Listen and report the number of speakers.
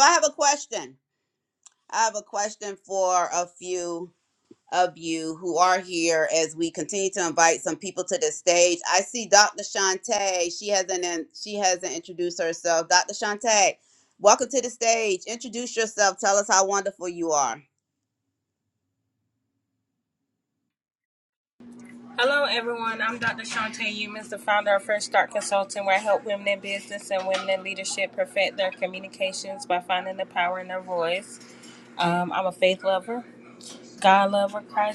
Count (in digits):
2